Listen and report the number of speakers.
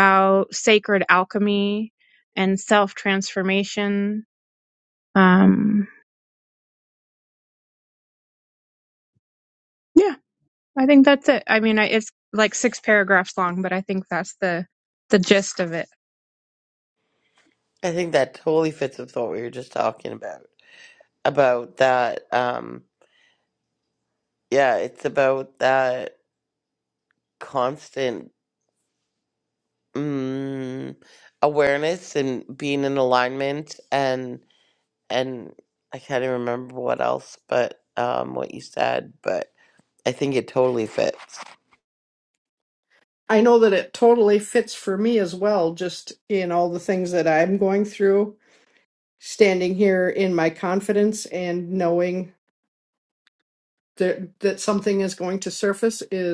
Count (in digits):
3